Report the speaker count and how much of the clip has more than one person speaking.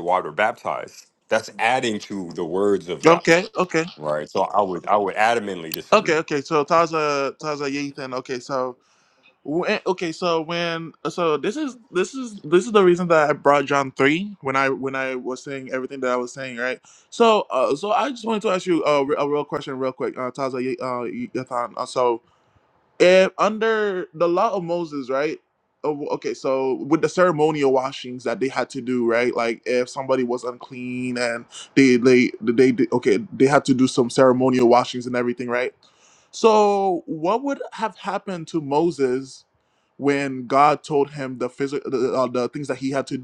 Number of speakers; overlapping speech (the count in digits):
2, about 1%